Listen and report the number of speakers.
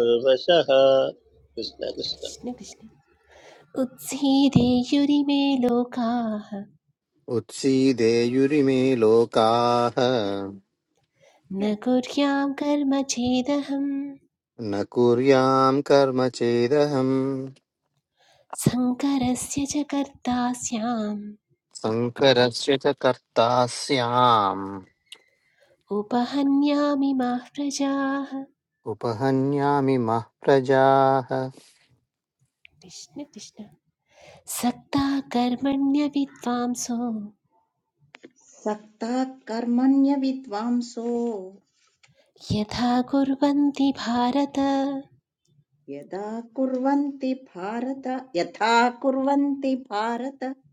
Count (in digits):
4